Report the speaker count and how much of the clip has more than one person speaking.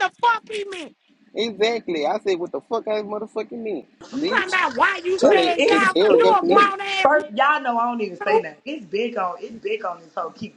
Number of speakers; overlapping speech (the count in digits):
3, about 20%